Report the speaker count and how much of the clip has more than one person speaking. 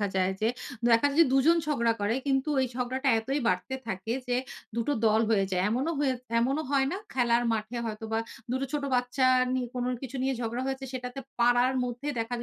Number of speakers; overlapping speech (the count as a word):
one, no overlap